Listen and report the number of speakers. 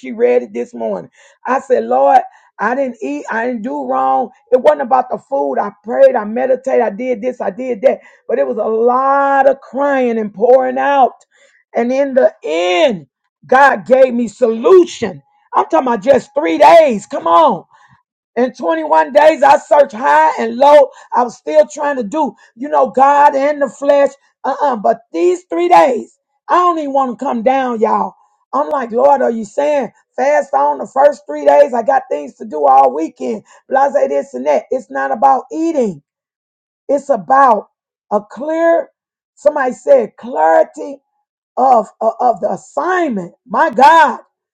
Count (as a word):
one